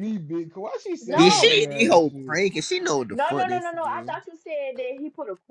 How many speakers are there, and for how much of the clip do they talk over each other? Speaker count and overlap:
3, about 42%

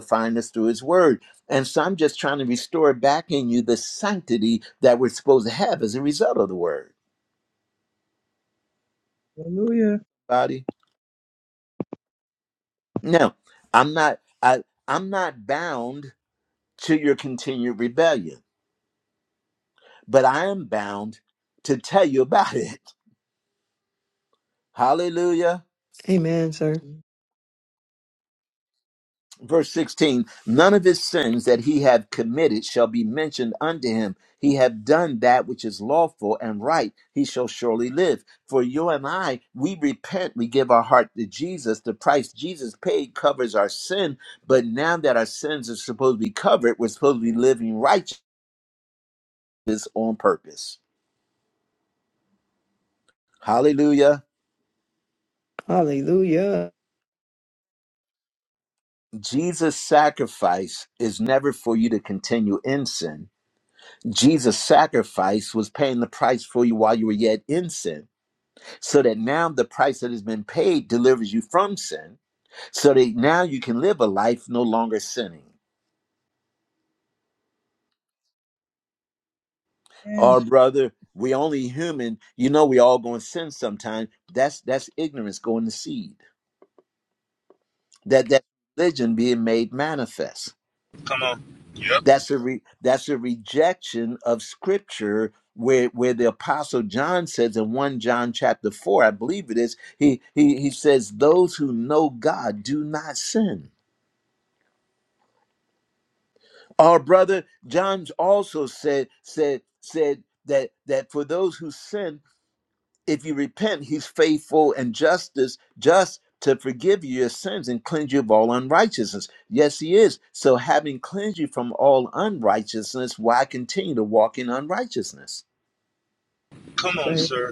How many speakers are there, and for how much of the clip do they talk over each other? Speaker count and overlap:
4, under 1%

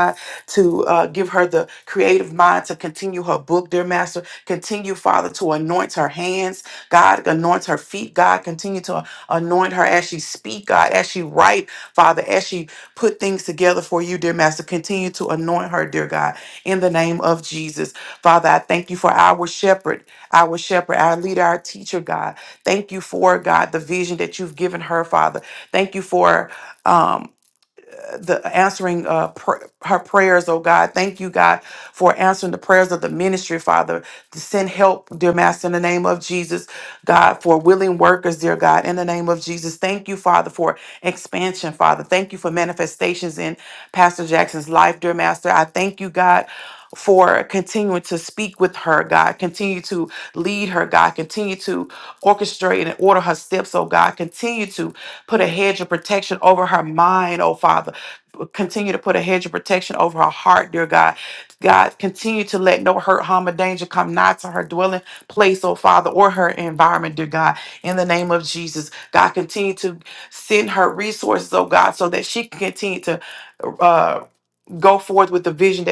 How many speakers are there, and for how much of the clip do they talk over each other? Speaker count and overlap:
1, no overlap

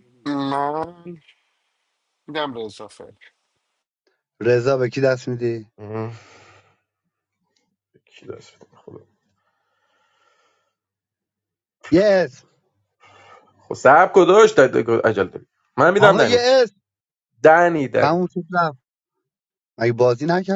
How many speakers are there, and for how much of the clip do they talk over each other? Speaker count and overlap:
3, about 3%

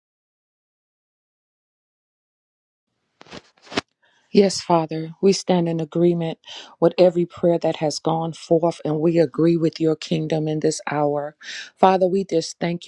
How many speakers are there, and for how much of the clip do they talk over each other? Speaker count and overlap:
1, no overlap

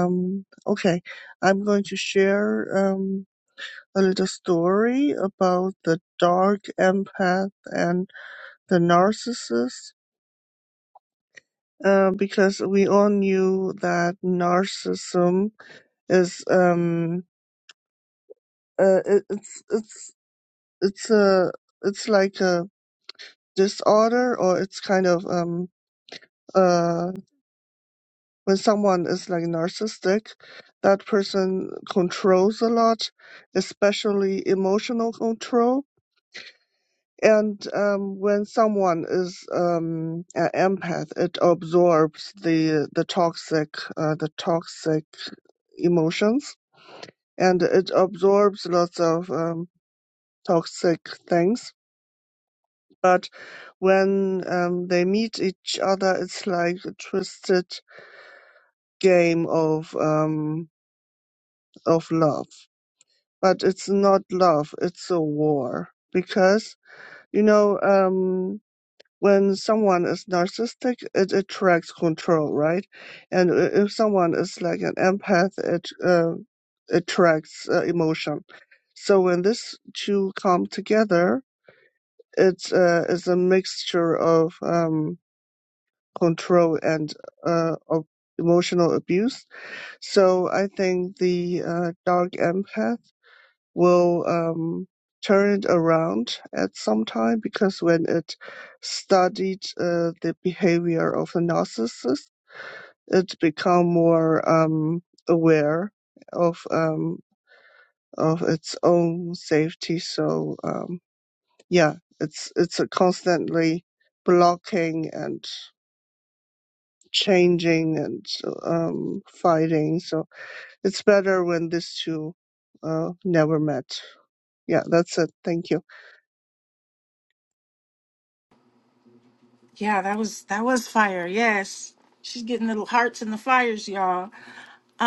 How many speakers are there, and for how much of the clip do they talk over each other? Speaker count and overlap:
2, no overlap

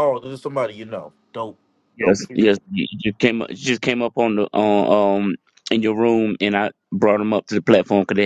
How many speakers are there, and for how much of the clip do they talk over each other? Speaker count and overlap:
2, about 6%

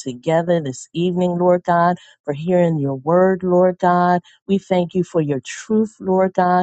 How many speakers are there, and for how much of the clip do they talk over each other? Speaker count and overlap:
1, no overlap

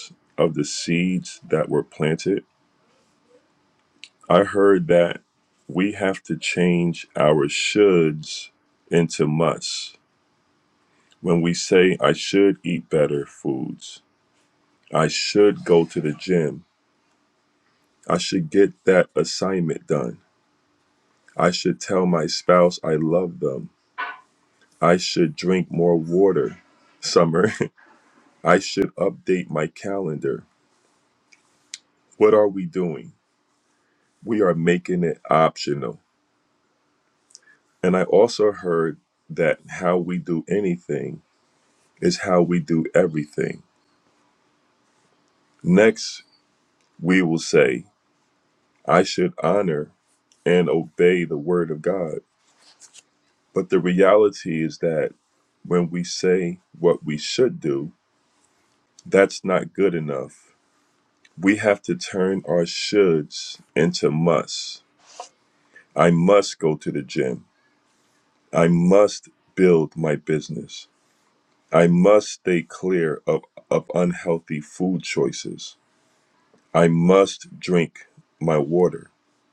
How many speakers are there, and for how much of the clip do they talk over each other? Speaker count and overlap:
1, no overlap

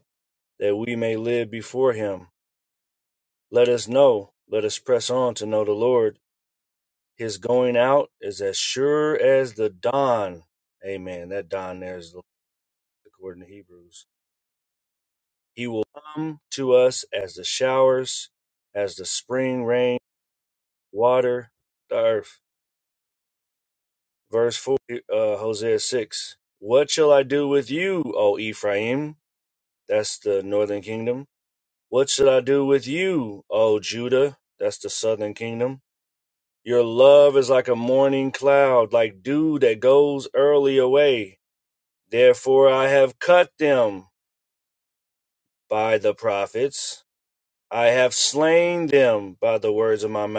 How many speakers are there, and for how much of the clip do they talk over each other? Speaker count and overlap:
1, no overlap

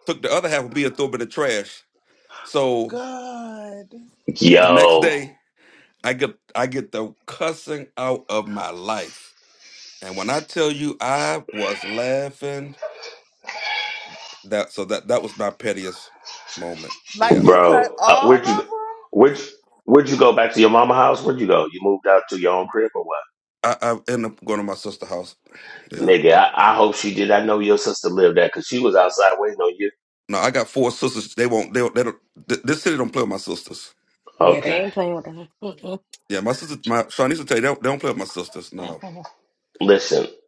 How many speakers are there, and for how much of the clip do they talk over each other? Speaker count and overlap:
4, about 7%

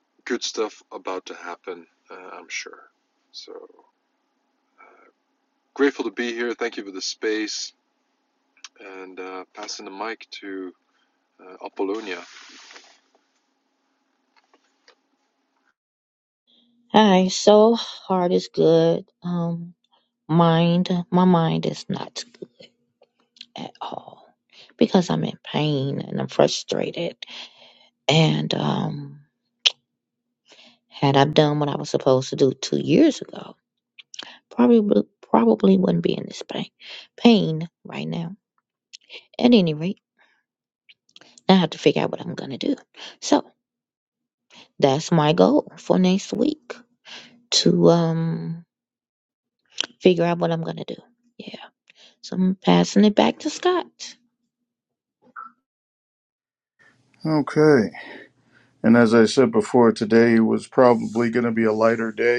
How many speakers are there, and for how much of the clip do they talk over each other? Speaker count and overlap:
3, no overlap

